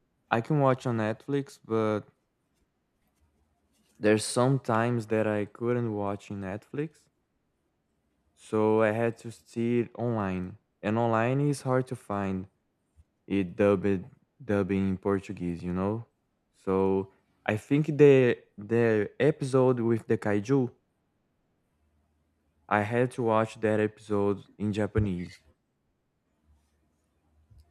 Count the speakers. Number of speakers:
1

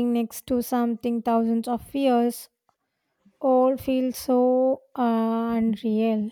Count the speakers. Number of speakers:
1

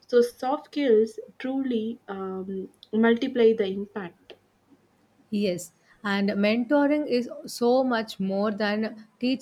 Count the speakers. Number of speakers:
2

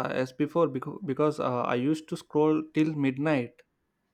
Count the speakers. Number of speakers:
1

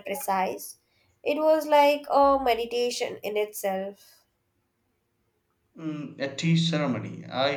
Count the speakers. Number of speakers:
2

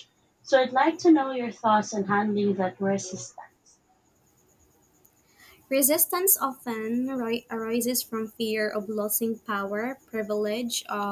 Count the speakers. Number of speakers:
2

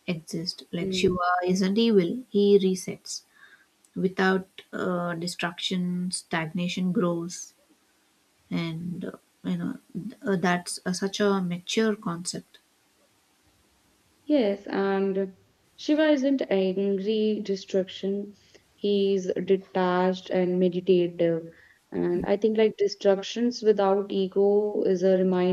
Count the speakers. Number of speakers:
2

